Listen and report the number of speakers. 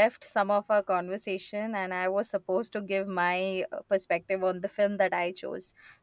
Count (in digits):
1